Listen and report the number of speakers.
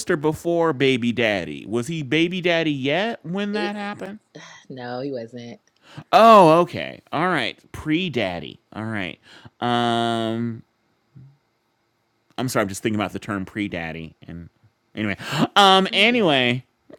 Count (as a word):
two